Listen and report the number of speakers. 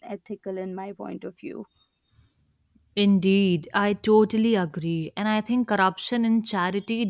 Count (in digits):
2